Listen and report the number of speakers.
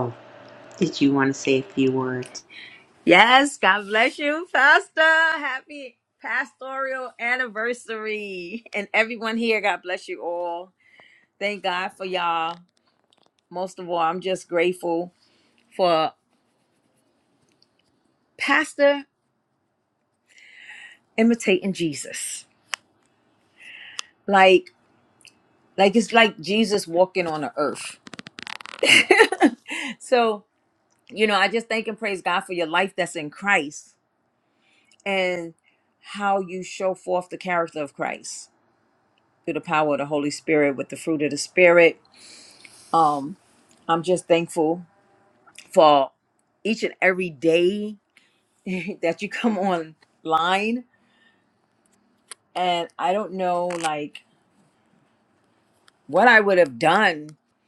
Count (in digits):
2